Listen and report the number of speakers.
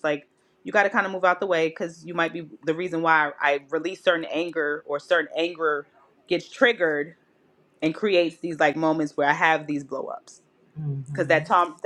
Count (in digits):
1